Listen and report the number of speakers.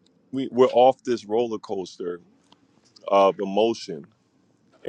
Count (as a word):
one